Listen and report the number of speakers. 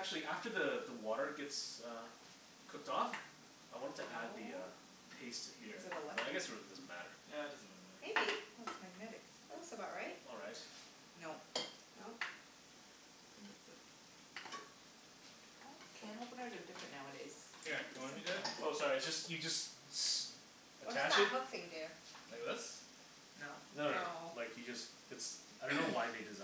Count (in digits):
4